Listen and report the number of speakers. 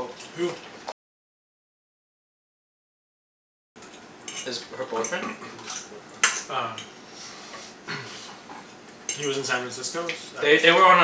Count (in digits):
2